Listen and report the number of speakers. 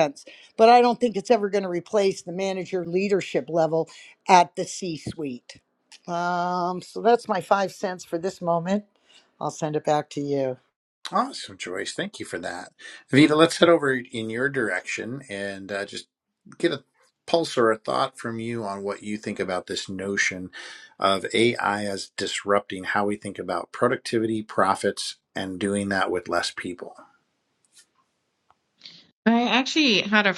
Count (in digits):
3